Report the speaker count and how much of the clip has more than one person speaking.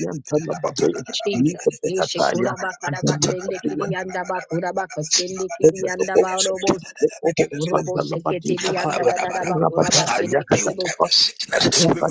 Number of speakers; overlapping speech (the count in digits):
3, about 44%